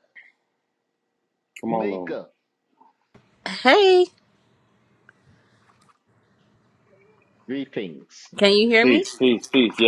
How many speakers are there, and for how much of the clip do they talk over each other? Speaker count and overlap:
3, about 8%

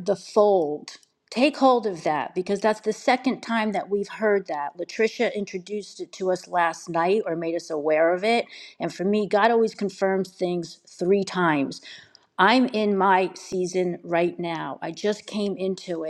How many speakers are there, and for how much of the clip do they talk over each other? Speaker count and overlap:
1, no overlap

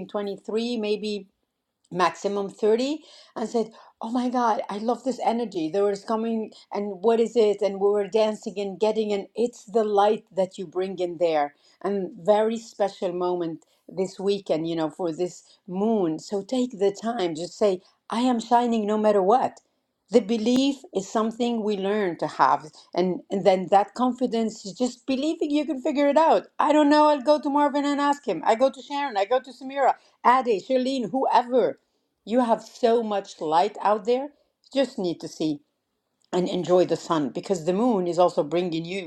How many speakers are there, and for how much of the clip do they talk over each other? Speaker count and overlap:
1, no overlap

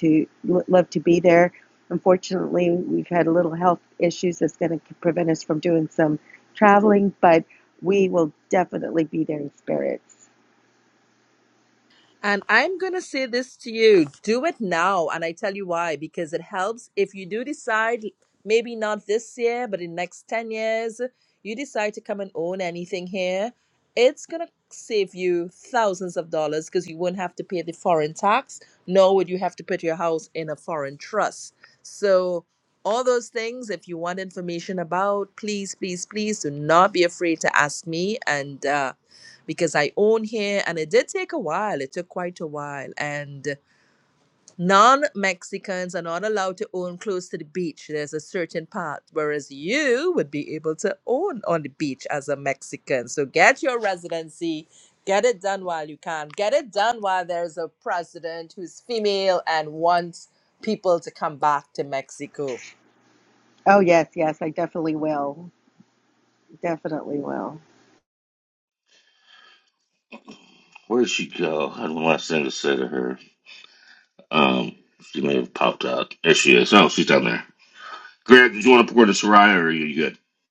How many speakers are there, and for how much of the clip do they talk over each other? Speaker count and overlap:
3, no overlap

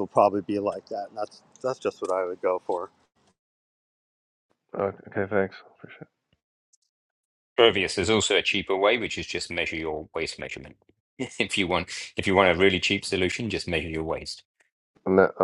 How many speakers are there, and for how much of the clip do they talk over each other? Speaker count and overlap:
3, no overlap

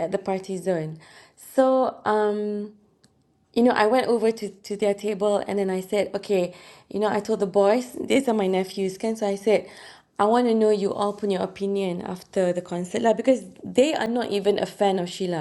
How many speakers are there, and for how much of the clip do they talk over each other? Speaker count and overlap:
1, no overlap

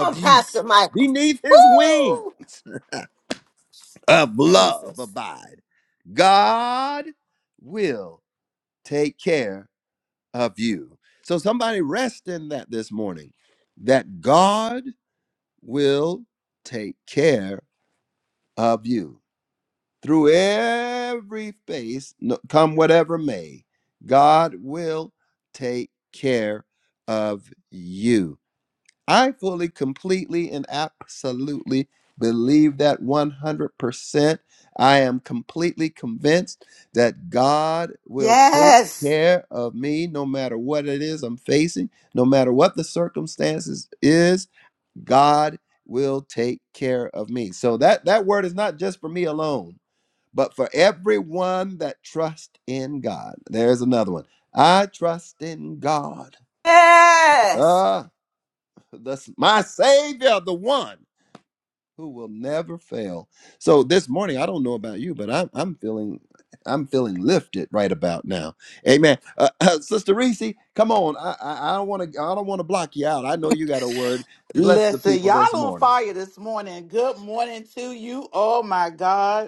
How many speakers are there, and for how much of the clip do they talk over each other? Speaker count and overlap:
3, about 5%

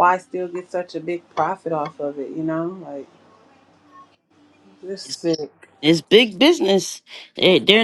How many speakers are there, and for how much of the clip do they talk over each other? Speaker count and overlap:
2, no overlap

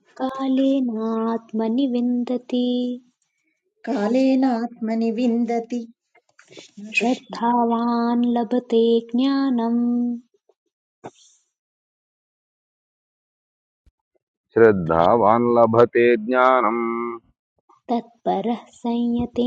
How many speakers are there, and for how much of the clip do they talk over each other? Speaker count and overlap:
3, about 3%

